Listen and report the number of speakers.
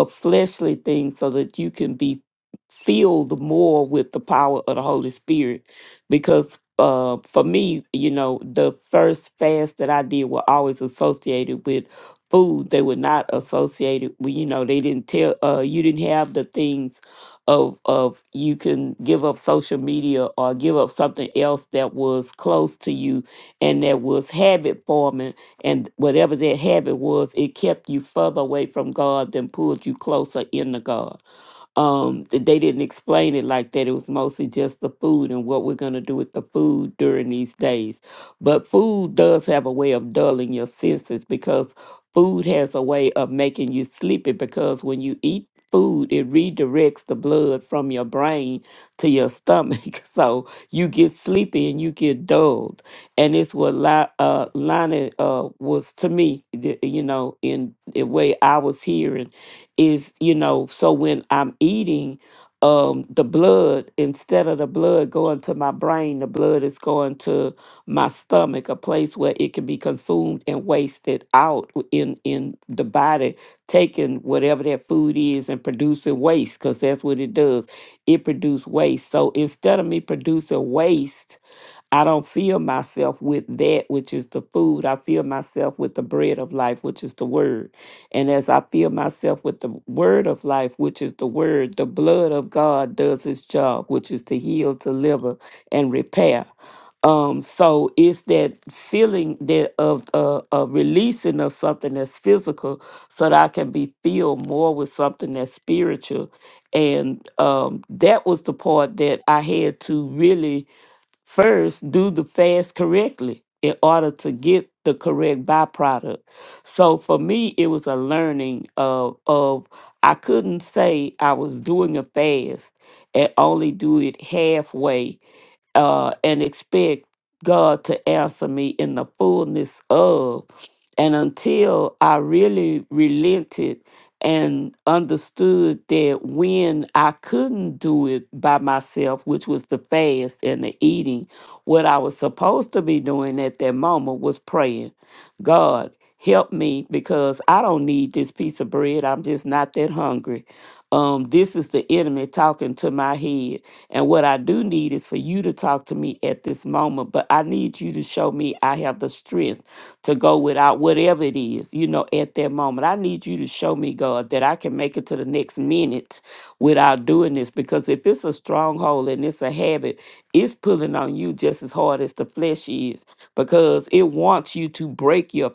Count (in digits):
1